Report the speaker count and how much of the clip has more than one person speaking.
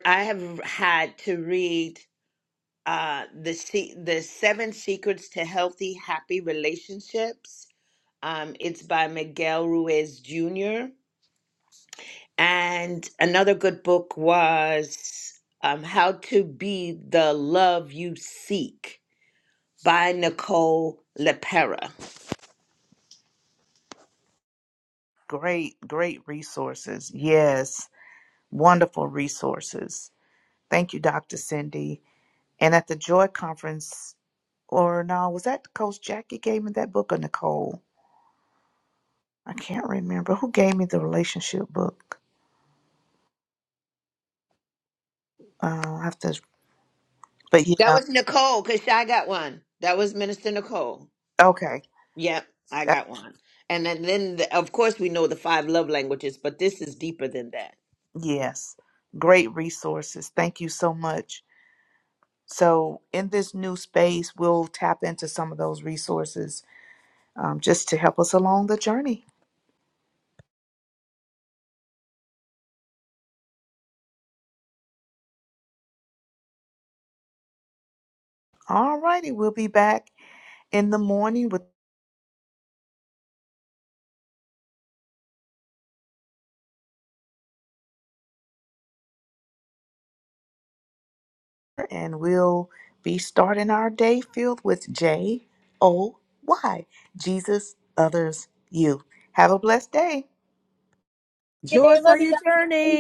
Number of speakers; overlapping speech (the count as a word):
three, under 1%